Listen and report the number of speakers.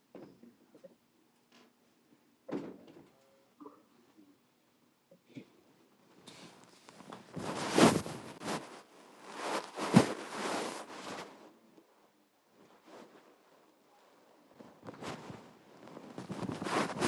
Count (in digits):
0